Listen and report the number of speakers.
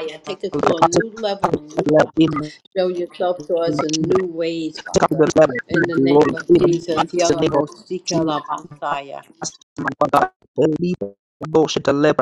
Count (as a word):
two